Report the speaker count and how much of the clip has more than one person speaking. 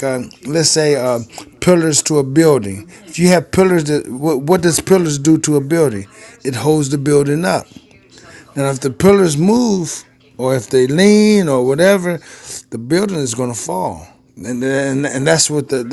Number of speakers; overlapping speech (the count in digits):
1, no overlap